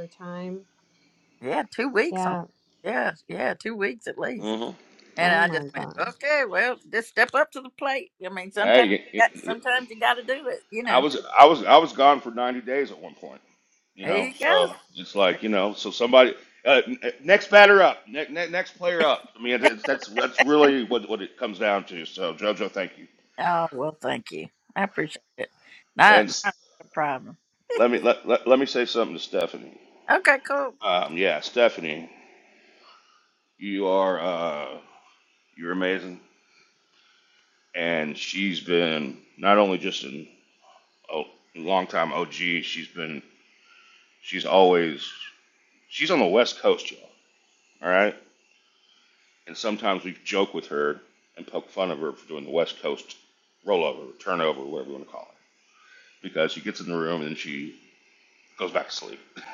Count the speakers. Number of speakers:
3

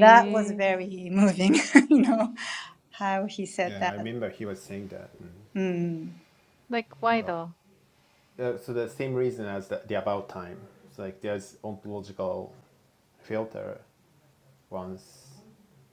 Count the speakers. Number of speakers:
3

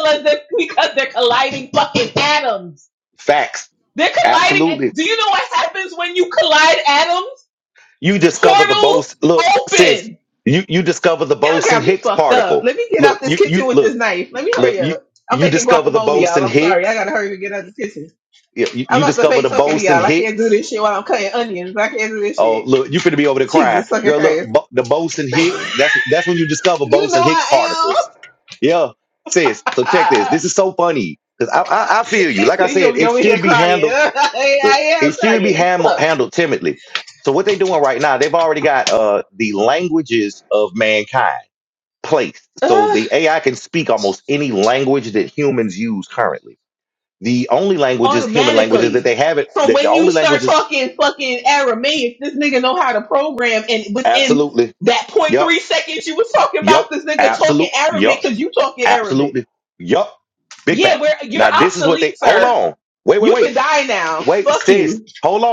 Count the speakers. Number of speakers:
2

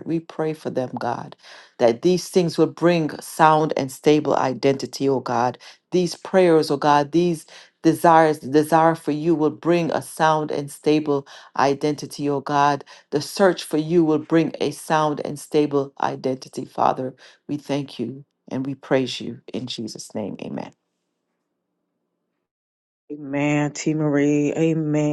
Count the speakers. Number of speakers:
2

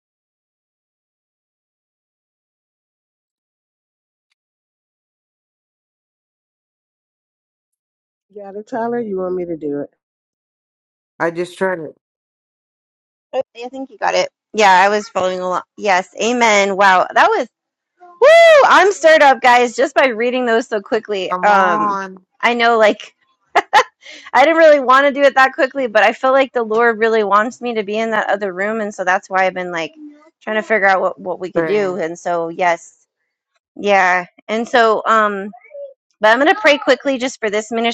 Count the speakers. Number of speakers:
3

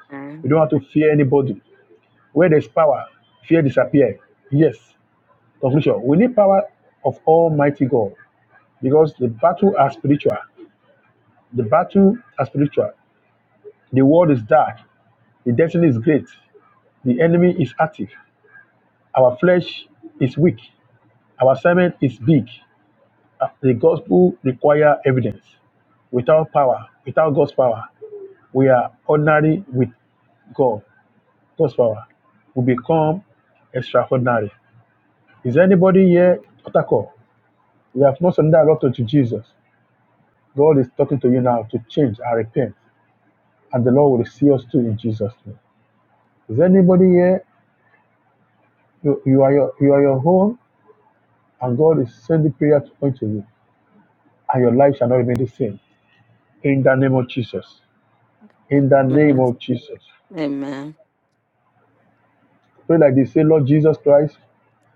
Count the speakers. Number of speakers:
2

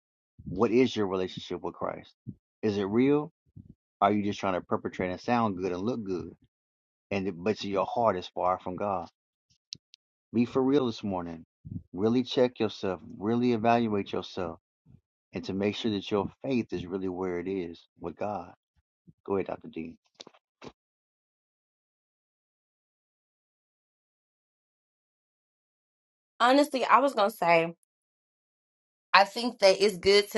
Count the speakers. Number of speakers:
2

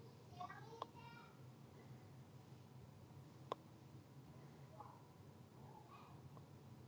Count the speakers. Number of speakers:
0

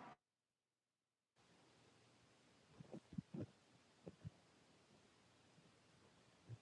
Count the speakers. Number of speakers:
0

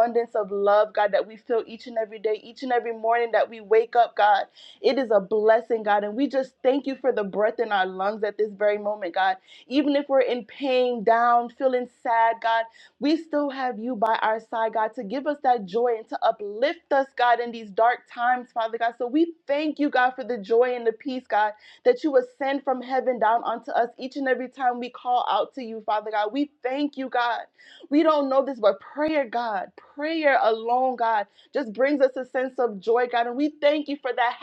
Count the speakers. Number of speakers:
1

